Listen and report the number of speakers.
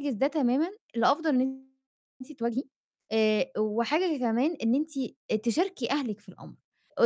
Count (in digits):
1